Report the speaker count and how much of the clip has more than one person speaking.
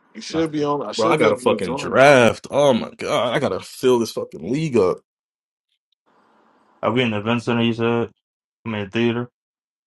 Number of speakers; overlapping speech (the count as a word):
three, about 12%